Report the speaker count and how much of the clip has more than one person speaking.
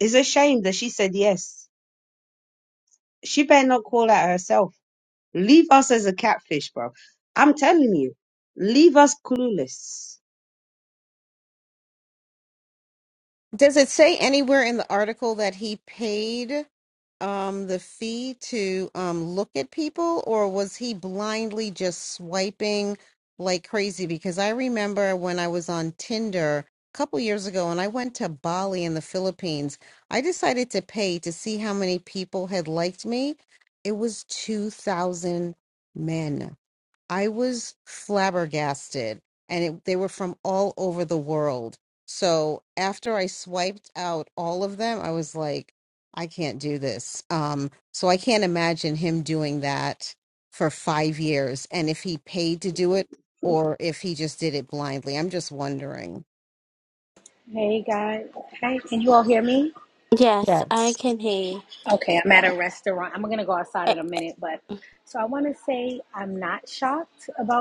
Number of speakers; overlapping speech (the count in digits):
4, about 1%